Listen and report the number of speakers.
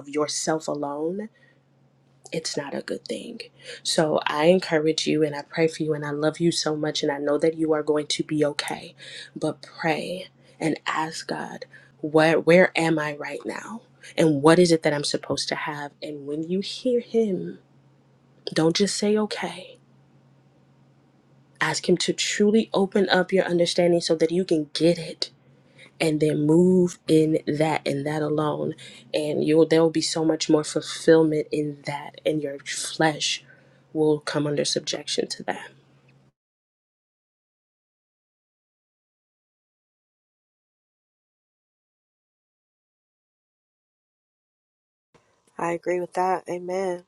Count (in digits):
2